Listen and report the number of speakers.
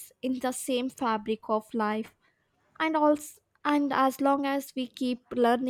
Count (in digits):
1